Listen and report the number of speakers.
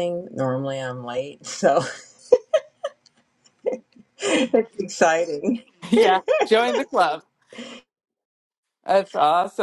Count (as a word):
two